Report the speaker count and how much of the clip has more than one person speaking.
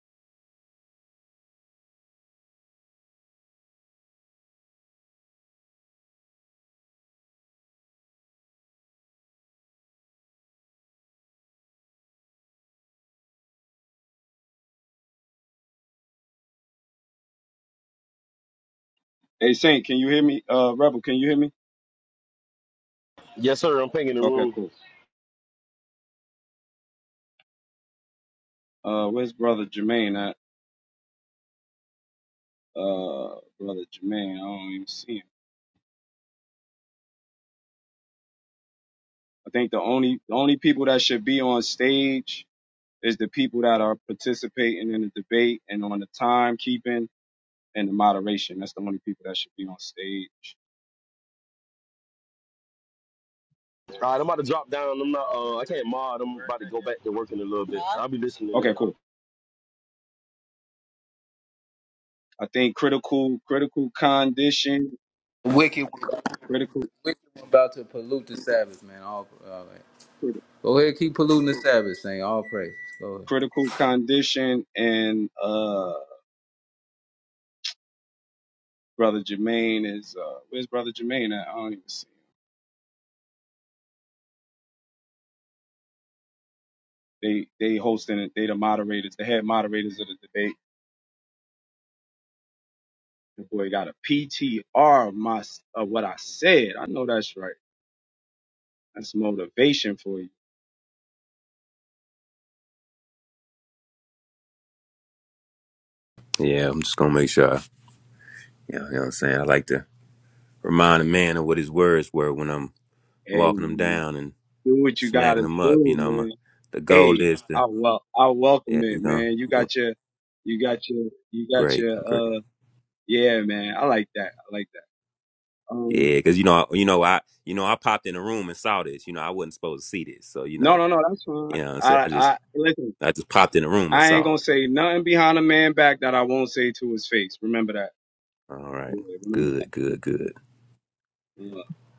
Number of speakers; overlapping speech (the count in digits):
4, about 5%